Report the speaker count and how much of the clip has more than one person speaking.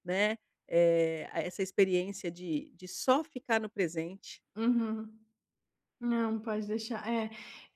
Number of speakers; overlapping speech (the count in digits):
2, no overlap